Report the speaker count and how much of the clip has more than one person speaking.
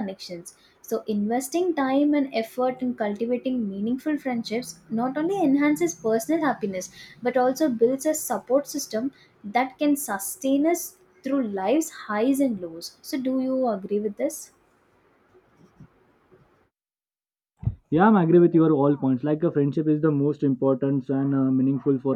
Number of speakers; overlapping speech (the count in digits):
2, no overlap